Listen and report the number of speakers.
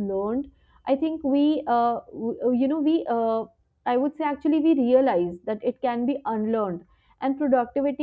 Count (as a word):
one